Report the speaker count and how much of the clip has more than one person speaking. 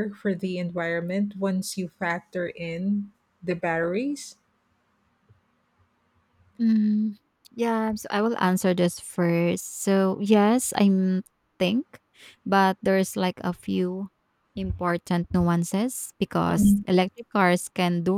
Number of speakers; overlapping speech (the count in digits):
2, about 2%